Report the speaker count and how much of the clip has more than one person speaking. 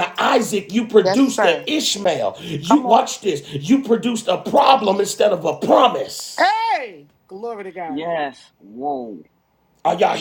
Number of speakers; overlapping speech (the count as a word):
three, about 12%